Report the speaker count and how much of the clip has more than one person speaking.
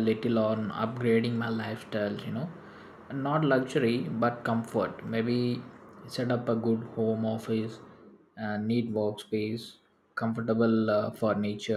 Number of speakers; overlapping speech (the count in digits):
1, no overlap